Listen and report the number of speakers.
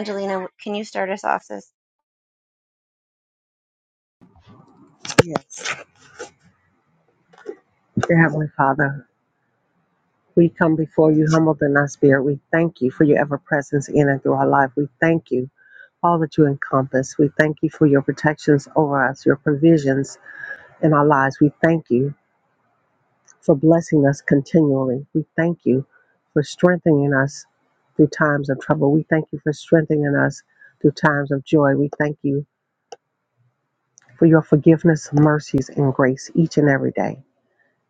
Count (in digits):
2